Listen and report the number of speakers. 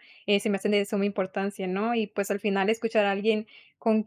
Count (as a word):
one